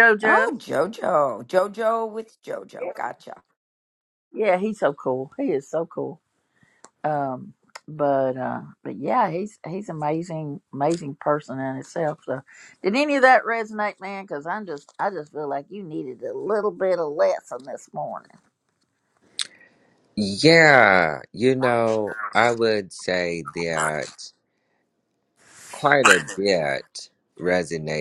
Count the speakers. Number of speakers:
three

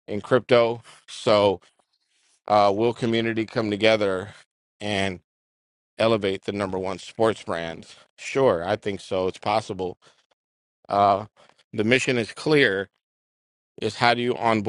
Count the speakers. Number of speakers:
one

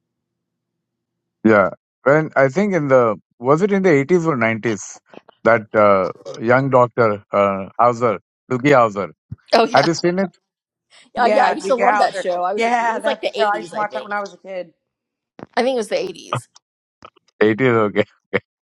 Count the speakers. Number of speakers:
three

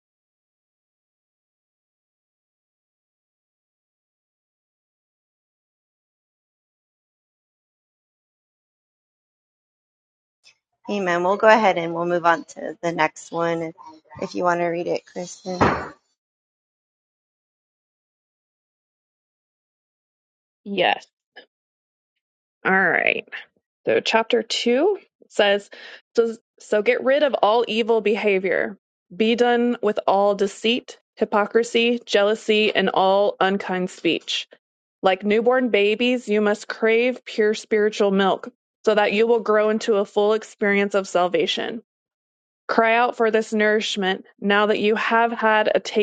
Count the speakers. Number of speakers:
two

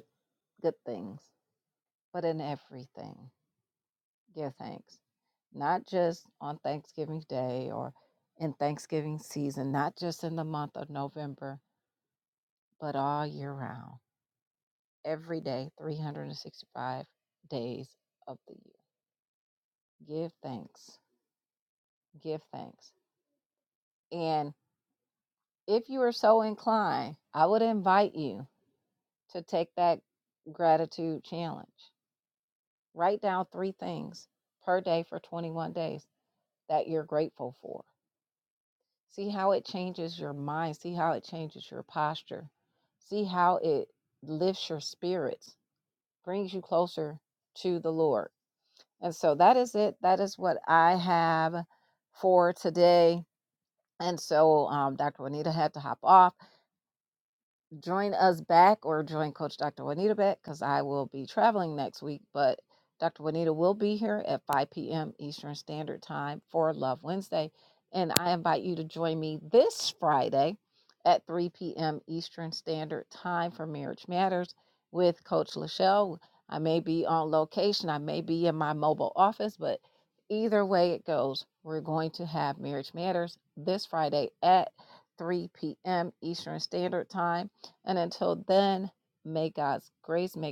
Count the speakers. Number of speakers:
one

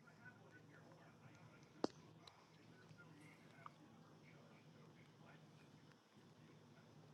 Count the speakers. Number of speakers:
zero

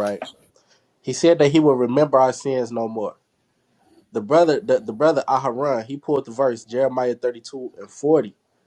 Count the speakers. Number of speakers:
one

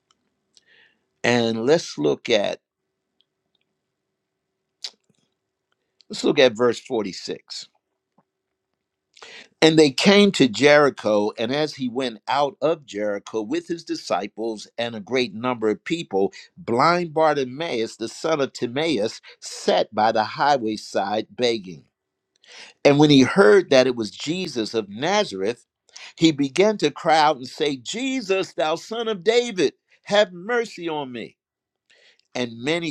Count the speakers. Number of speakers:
one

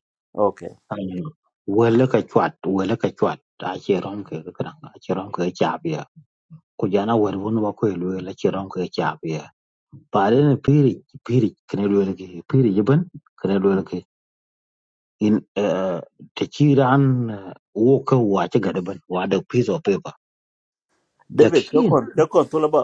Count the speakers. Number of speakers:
two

